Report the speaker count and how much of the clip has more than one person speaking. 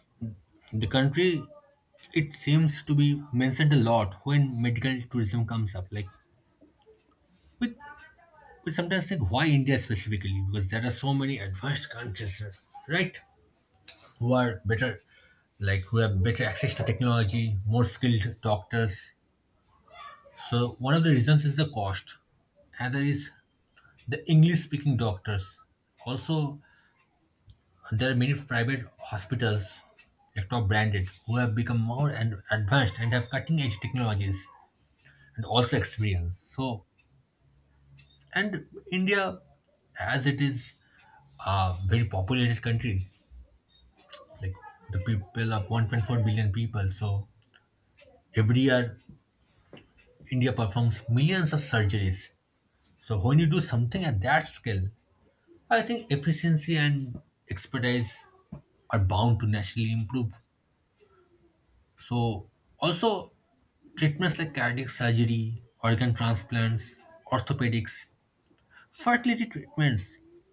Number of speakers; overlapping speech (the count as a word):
one, no overlap